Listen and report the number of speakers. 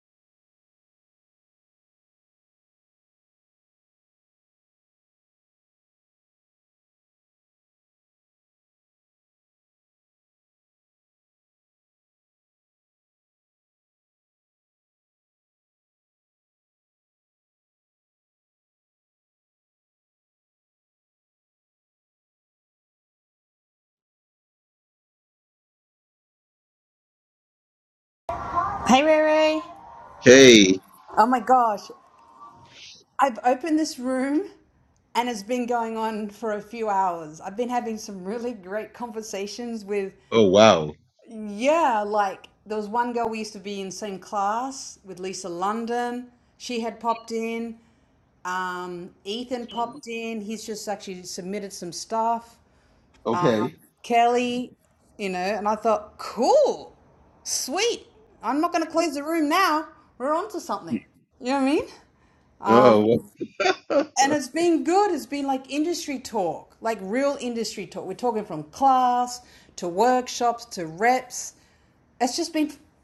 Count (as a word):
two